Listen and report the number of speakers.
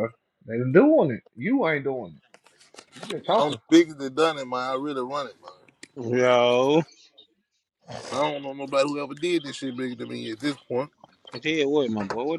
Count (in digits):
3